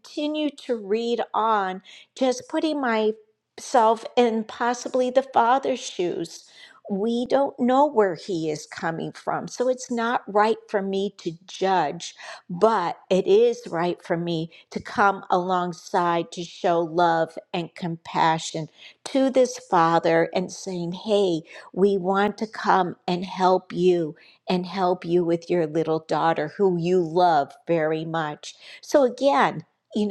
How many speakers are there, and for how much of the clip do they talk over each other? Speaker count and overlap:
1, no overlap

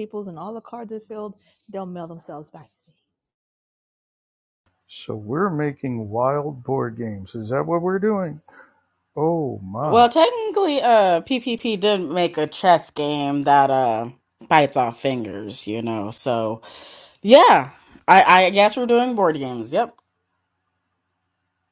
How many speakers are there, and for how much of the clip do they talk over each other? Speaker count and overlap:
3, about 1%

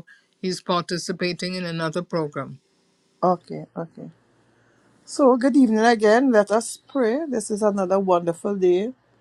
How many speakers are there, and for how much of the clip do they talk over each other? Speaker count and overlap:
2, no overlap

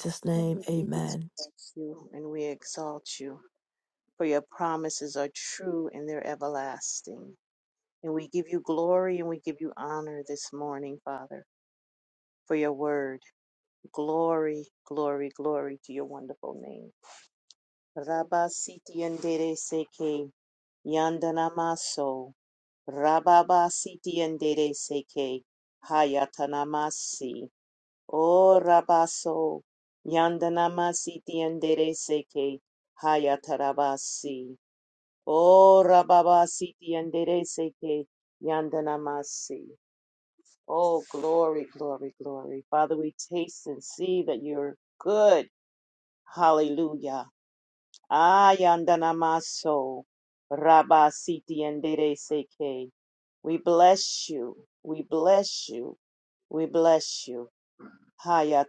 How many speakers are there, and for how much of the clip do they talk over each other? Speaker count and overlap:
2, under 1%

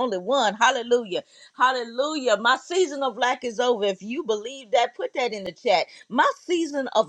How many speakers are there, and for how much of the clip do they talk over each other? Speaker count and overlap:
1, no overlap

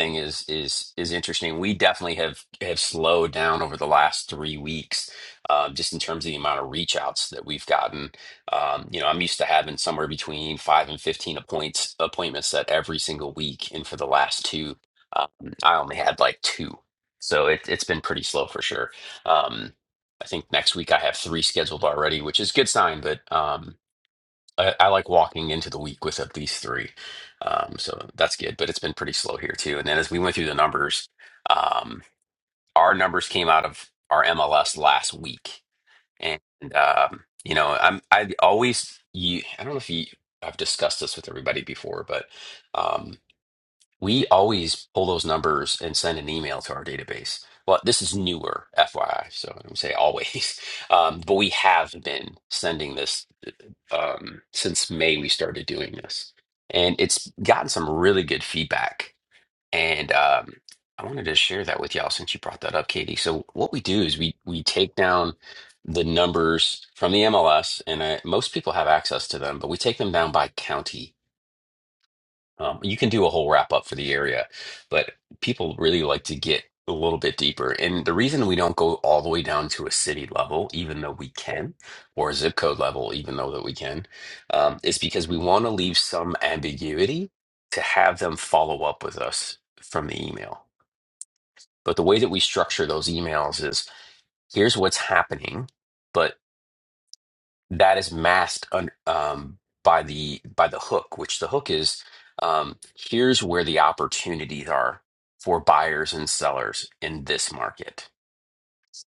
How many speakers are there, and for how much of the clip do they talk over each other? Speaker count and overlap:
1, no overlap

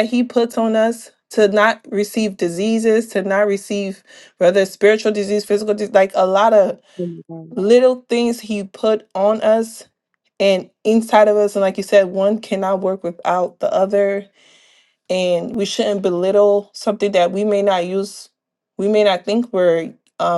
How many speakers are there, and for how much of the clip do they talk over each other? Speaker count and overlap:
1, no overlap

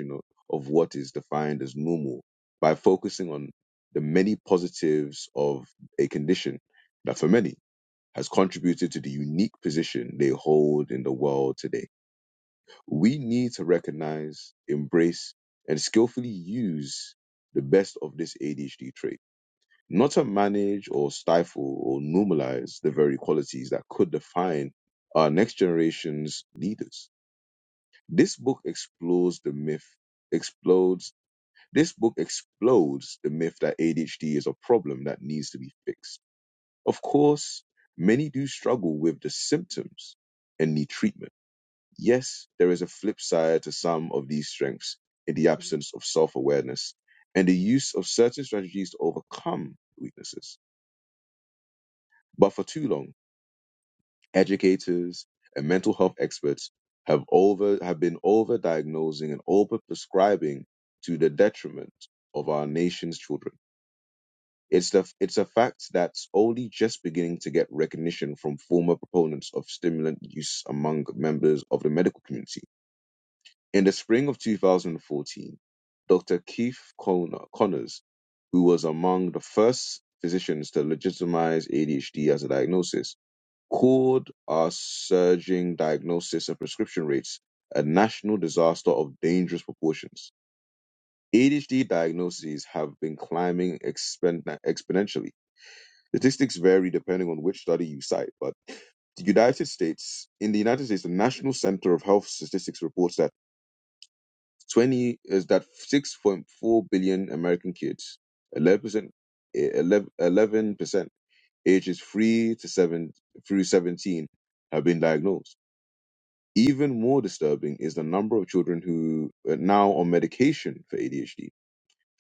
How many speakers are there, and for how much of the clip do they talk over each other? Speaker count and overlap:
1, no overlap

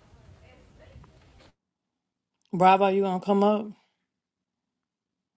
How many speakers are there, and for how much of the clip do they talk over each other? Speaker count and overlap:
1, no overlap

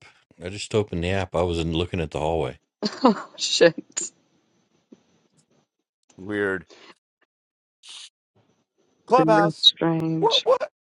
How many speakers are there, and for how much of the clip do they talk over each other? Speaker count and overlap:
3, about 6%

